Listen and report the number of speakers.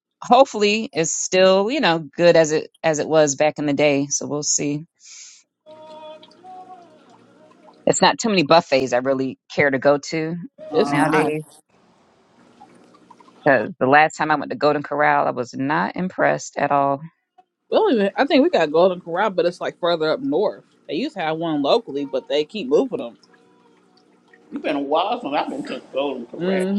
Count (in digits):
3